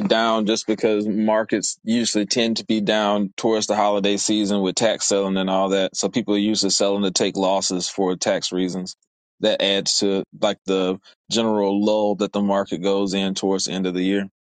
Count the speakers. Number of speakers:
one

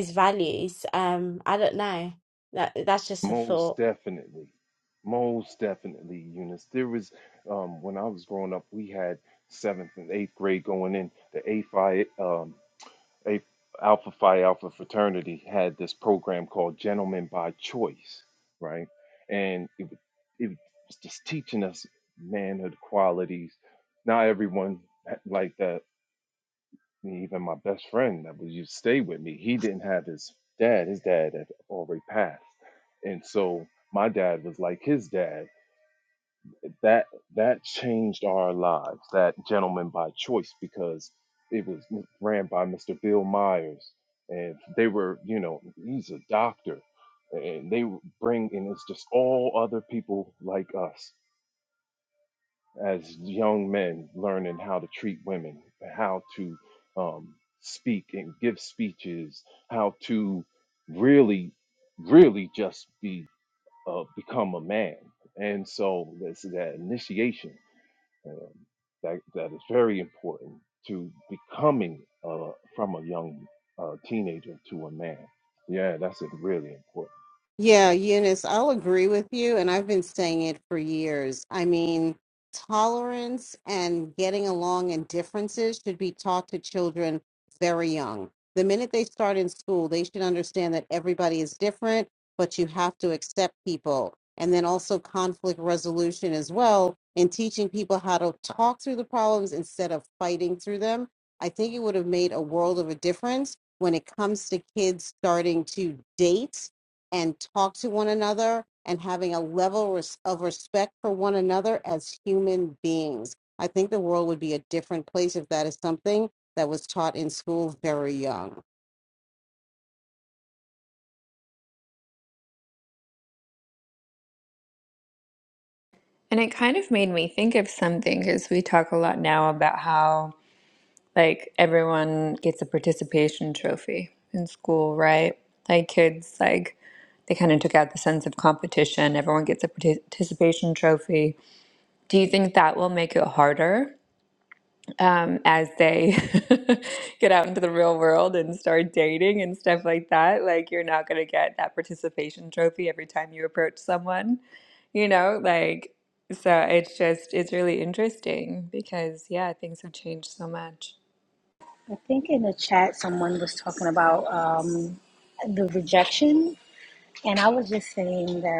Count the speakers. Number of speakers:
five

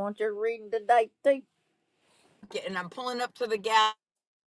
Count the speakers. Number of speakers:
two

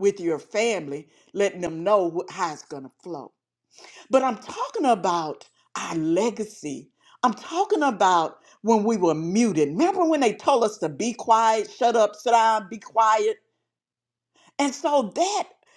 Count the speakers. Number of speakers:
one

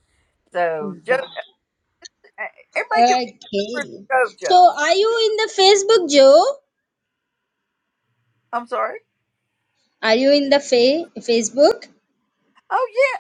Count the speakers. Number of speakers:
two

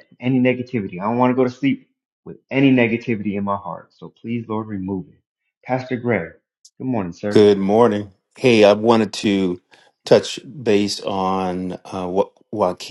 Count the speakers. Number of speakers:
two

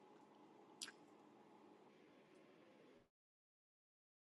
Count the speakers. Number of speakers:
zero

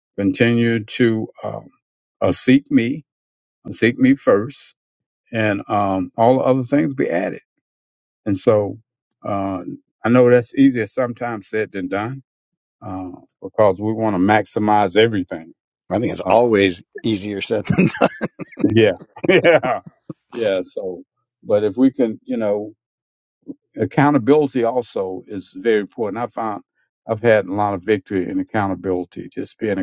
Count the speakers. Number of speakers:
two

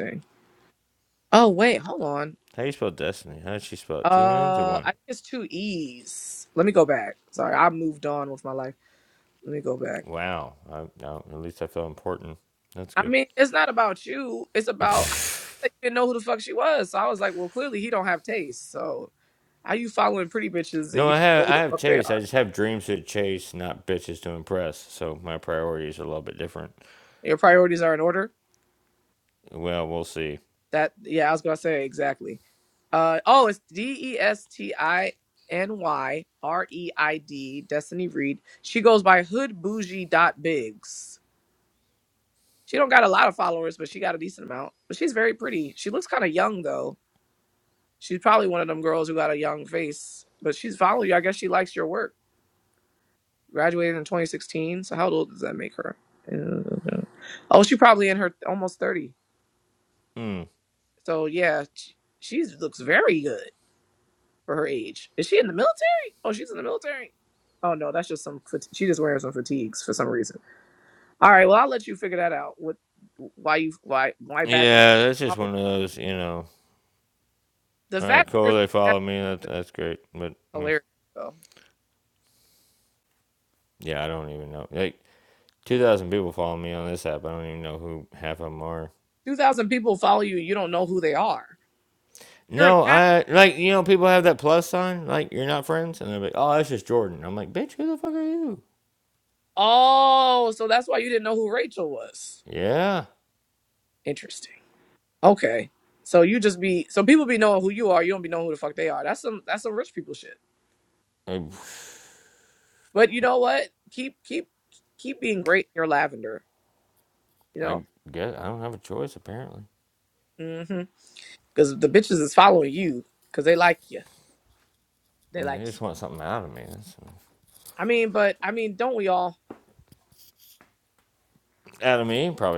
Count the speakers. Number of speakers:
two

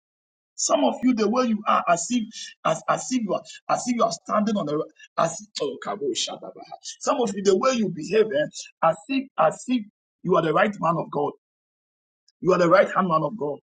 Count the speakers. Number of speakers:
one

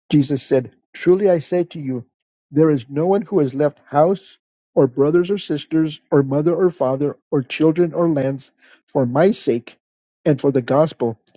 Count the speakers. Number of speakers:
one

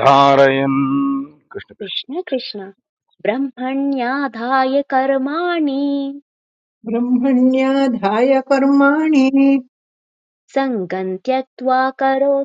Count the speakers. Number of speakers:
three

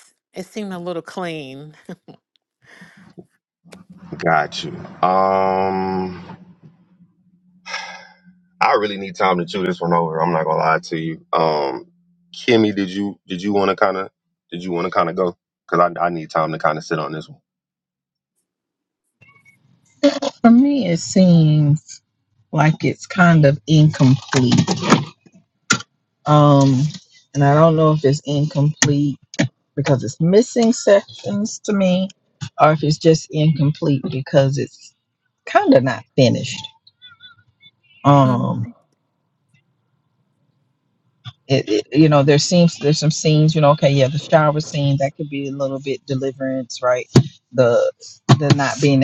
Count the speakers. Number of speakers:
three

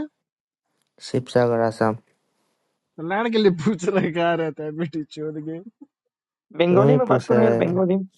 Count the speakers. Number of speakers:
three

